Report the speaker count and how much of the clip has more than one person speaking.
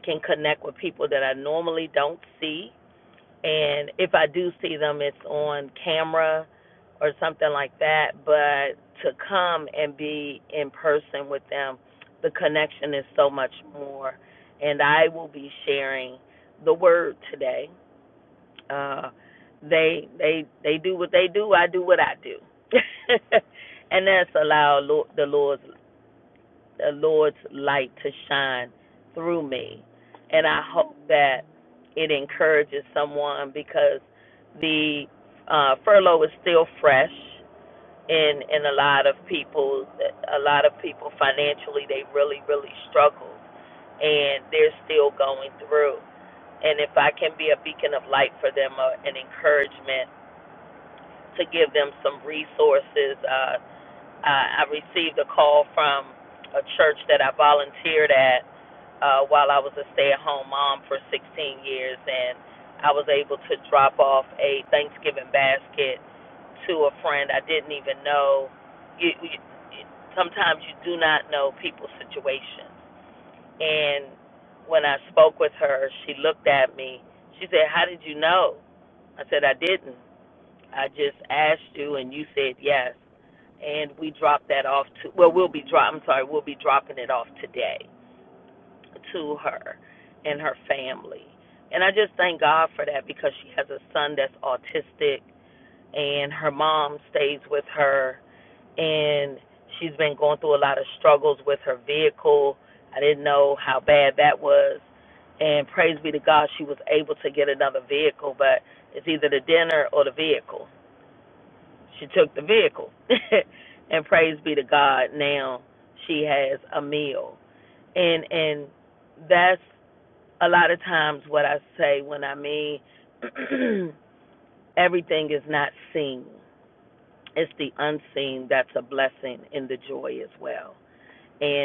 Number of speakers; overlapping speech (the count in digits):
1, no overlap